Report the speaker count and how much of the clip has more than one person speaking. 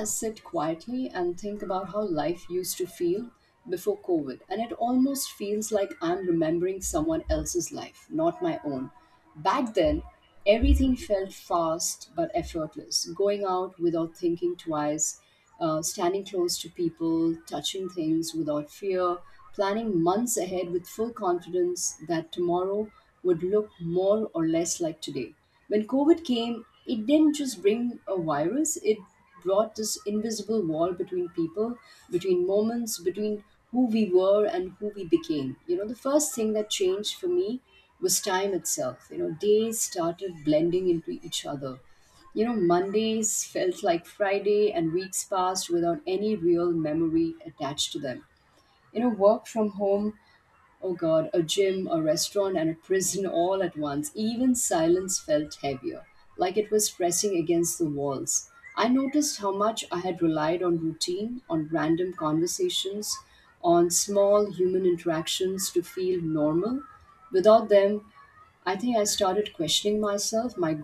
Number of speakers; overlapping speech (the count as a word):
one, no overlap